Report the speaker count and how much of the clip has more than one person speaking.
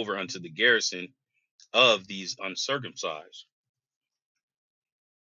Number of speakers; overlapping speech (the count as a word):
one, no overlap